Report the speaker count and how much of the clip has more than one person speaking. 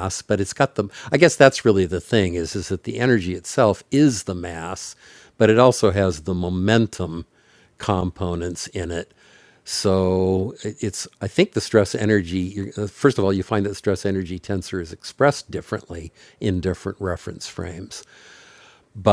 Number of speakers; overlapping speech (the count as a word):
one, no overlap